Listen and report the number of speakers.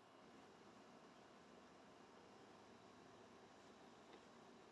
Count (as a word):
zero